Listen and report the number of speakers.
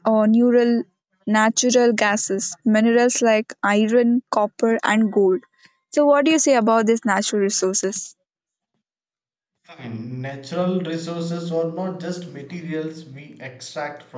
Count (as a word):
two